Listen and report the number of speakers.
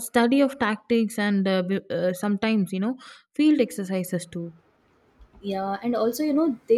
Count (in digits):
2